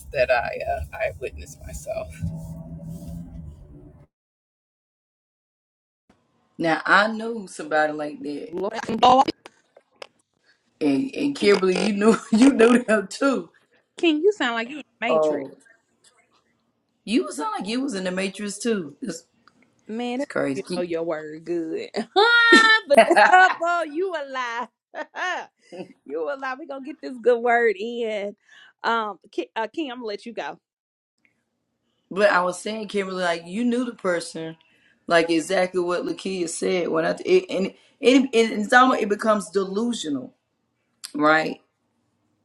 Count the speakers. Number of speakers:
three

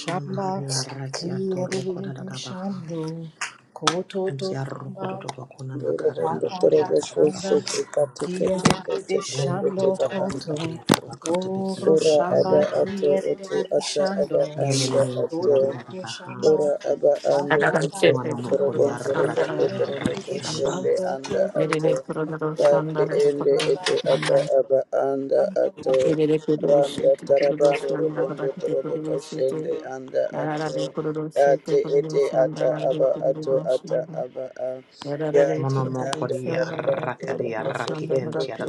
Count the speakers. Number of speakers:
four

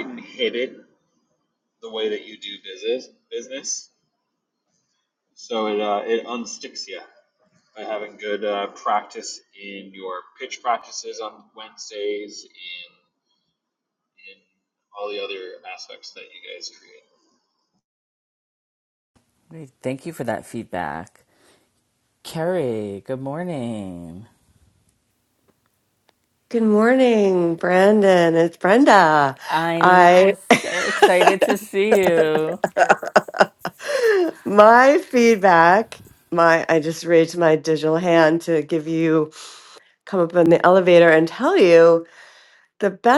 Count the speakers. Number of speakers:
three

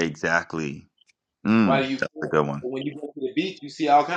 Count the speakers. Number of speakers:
two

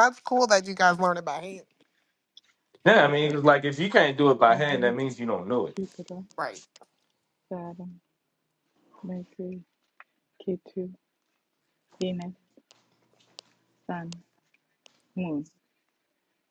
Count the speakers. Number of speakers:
three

